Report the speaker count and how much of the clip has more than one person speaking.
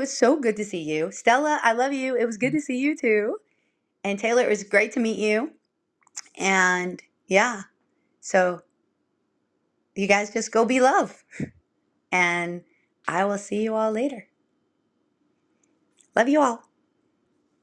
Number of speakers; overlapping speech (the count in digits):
1, no overlap